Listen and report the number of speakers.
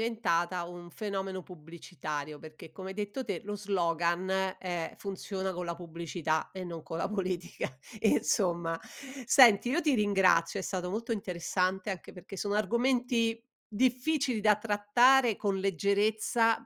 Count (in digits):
1